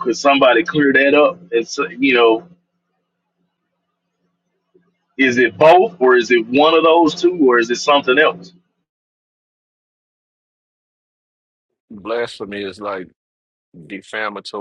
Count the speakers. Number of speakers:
two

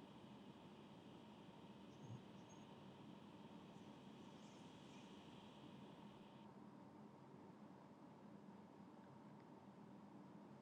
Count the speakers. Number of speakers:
zero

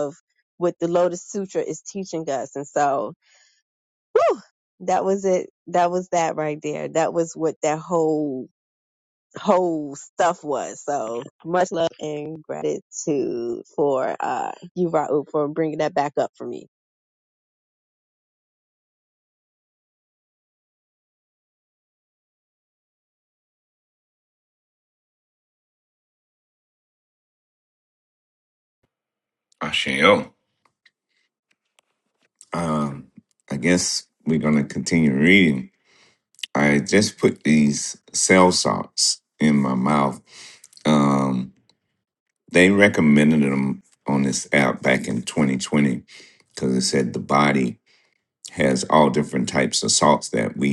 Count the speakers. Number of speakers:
two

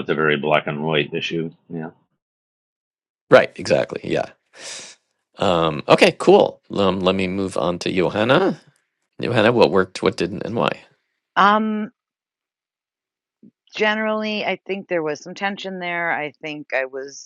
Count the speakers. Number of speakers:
three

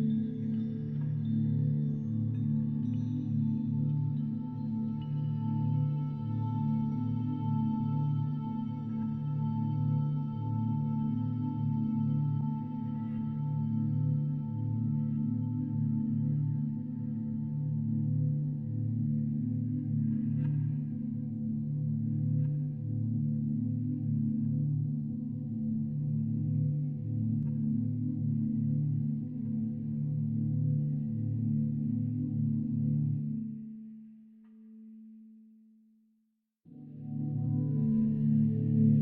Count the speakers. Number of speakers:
zero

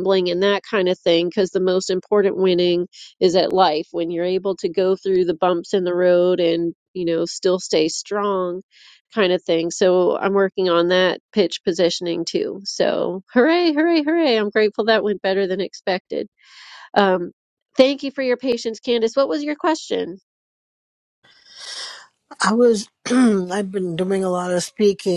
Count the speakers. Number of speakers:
two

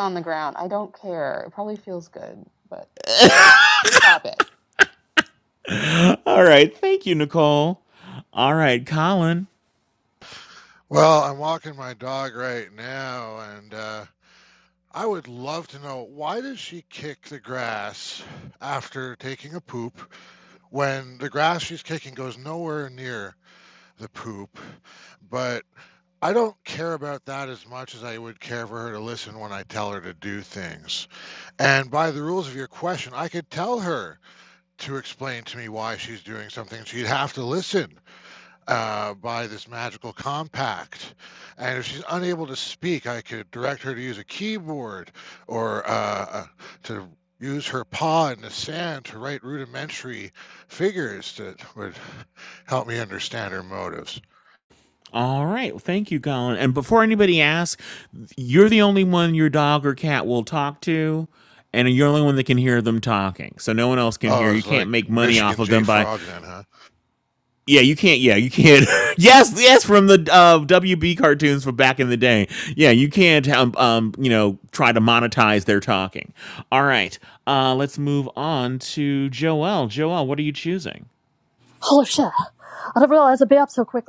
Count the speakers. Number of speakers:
four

